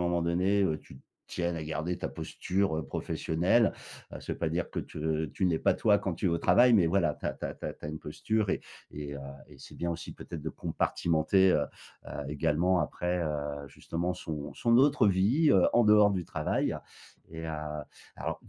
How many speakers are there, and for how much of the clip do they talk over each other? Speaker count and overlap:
1, no overlap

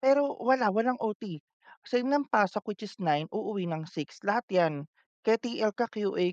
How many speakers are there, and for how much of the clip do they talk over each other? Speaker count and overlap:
1, no overlap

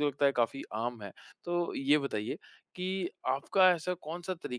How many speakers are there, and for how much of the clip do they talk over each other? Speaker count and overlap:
1, no overlap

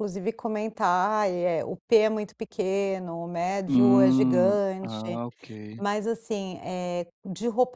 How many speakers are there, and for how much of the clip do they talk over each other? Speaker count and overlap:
2, about 19%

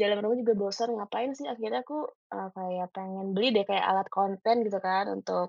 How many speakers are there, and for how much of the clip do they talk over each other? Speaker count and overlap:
1, no overlap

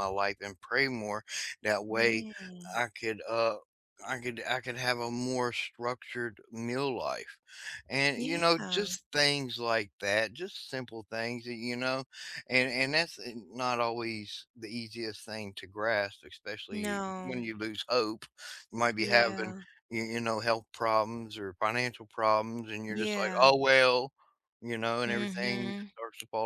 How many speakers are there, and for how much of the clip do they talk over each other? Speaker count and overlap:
2, about 14%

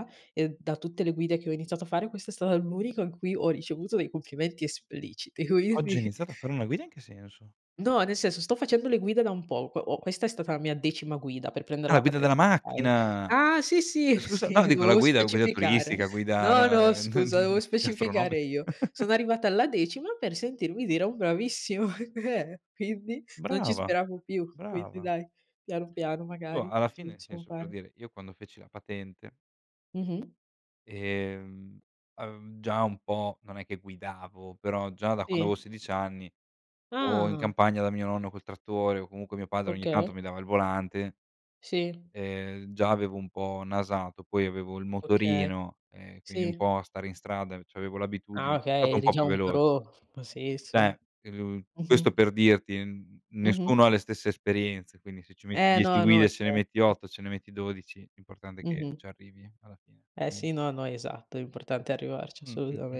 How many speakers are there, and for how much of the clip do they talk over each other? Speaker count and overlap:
2, about 21%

